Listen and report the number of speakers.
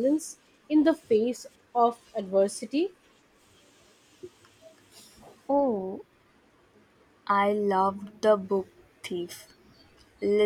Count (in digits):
2